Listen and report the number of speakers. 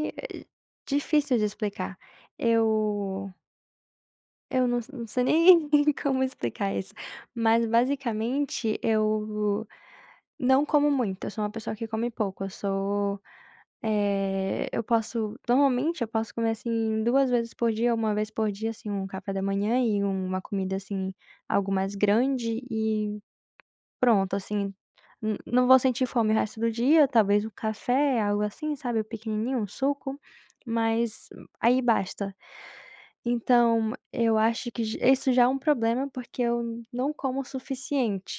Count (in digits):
1